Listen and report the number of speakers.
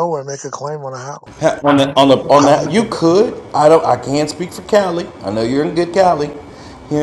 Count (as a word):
two